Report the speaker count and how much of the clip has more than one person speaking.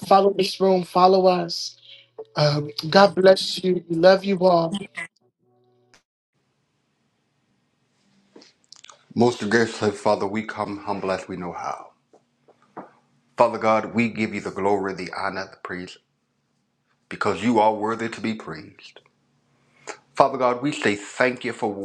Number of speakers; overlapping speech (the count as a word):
two, no overlap